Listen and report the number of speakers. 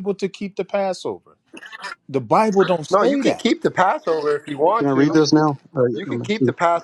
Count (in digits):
3